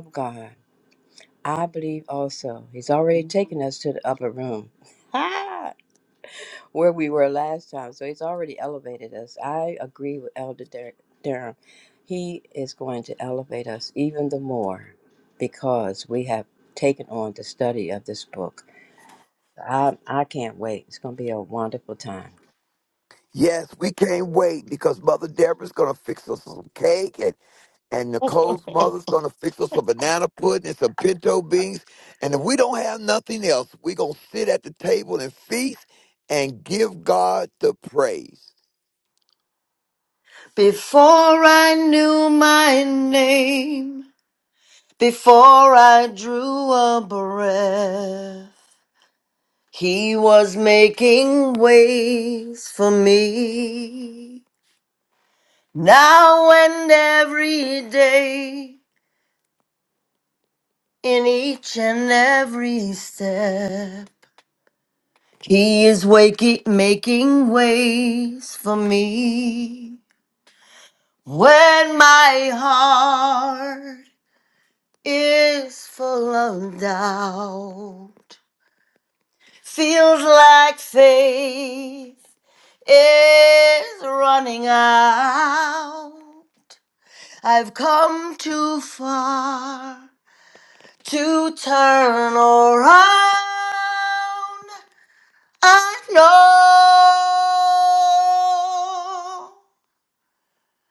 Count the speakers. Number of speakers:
three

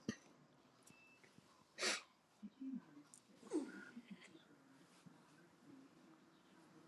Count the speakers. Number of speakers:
zero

